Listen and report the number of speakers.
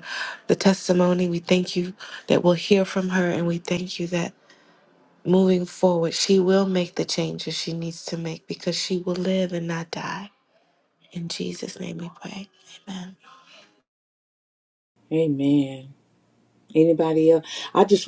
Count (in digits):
2